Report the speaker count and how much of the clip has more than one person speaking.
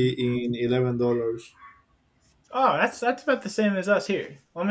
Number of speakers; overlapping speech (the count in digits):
2, about 3%